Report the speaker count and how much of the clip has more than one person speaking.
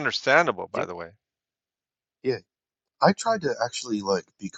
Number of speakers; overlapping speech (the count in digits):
2, no overlap